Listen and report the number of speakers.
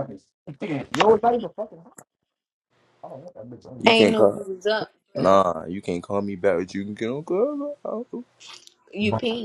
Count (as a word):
three